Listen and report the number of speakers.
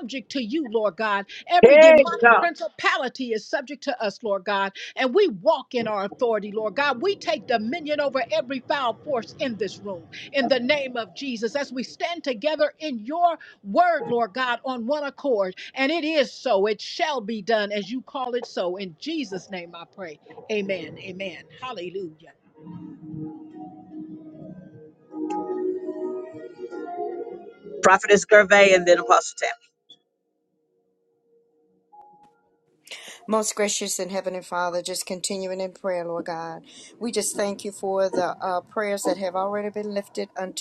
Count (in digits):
3